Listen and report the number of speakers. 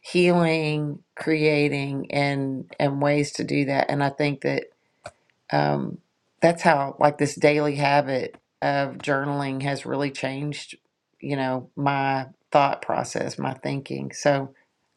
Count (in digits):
1